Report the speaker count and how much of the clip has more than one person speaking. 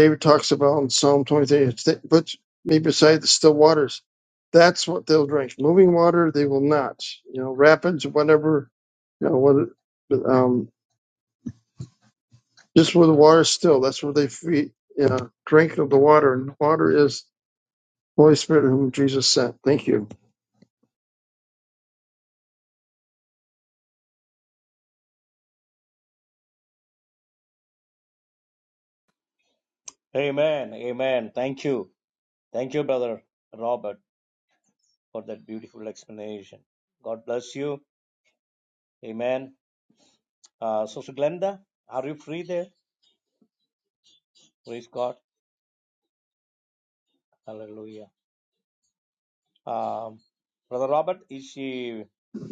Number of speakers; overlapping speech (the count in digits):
2, no overlap